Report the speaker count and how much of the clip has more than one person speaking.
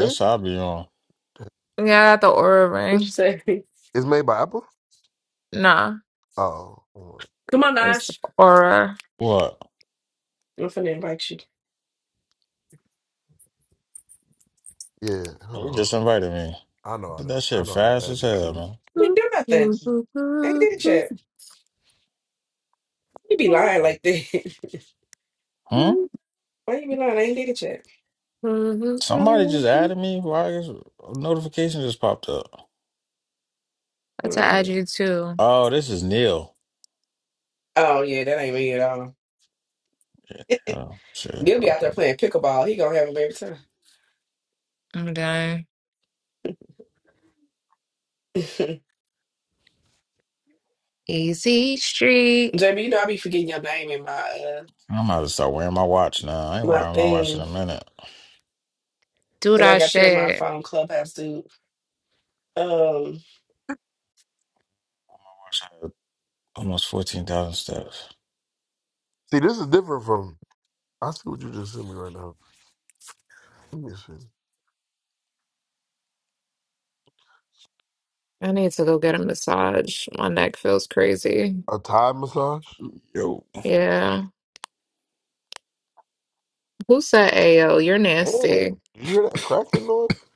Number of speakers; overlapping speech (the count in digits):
4, about 6%